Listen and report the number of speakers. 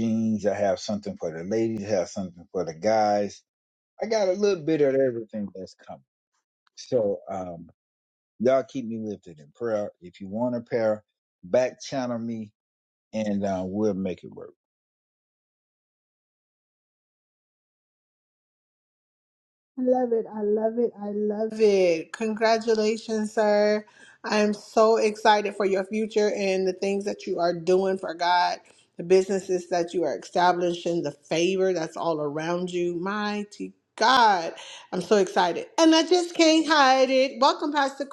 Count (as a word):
two